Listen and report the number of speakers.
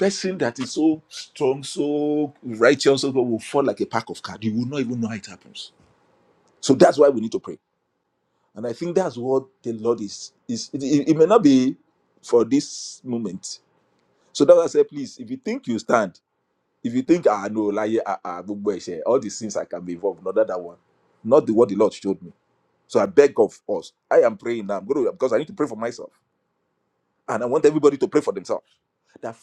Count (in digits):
1